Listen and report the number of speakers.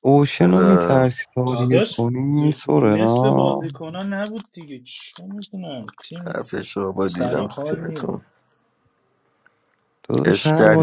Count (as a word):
three